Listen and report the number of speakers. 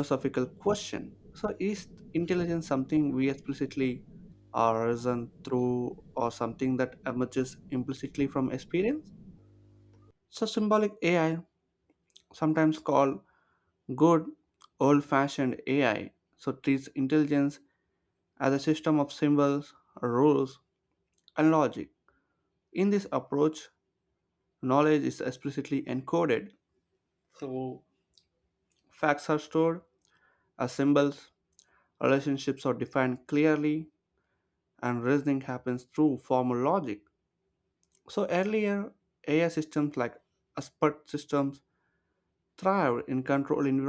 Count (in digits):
1